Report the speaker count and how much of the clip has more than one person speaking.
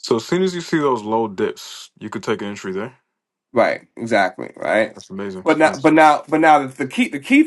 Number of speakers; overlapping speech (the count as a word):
two, about 4%